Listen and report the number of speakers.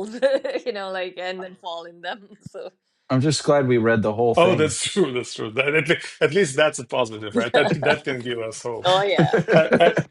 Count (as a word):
three